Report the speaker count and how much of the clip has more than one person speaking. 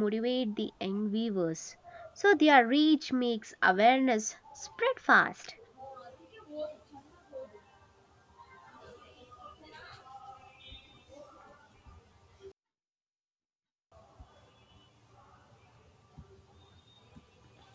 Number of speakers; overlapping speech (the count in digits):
1, no overlap